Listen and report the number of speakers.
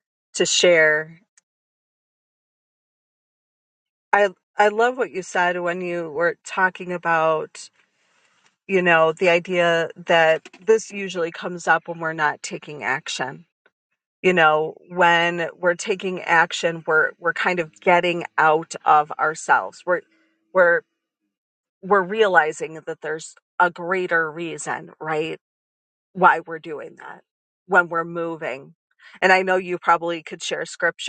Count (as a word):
one